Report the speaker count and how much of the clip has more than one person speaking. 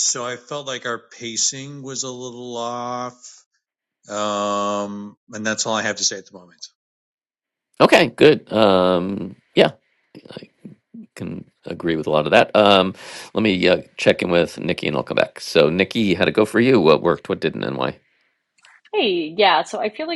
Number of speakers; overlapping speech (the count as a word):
three, no overlap